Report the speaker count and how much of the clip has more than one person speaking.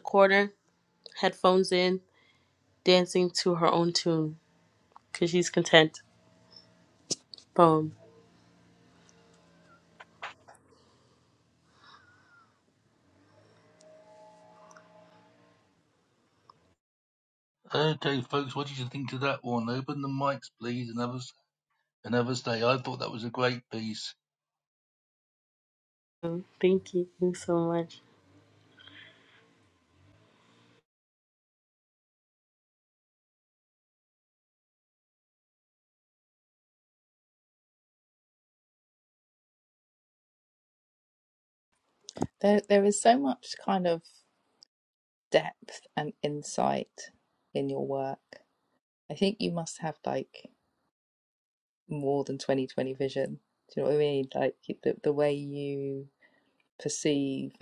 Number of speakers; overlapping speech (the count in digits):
3, no overlap